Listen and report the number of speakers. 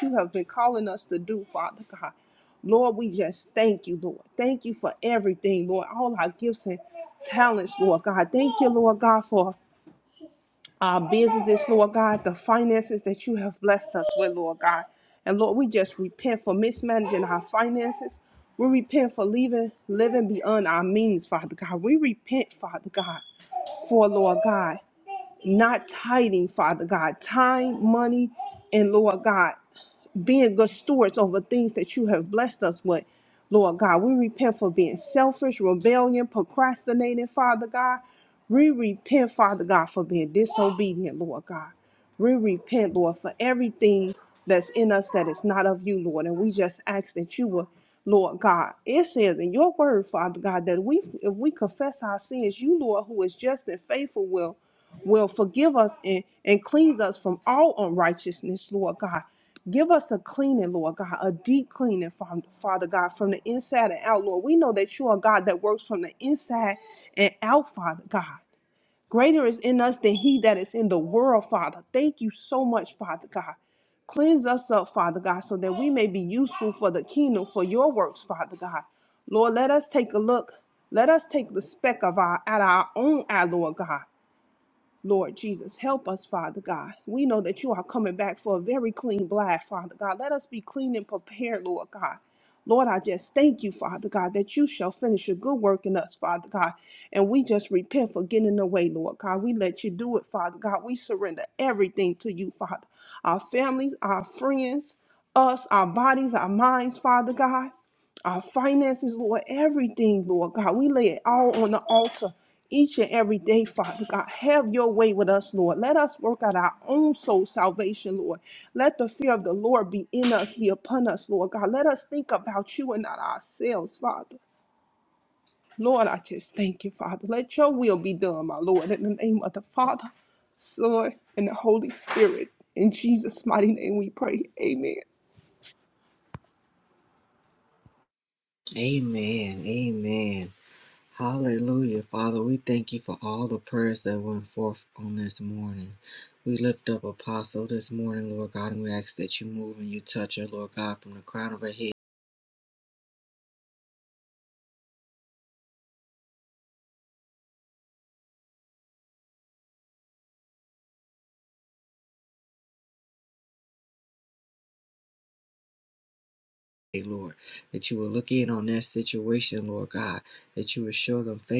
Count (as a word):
two